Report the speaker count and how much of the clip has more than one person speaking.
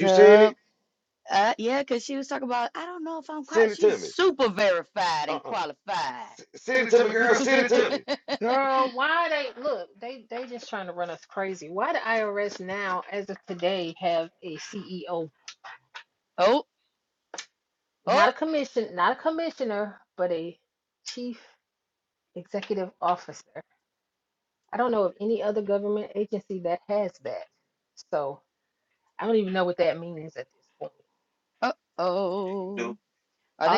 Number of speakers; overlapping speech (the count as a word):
three, about 9%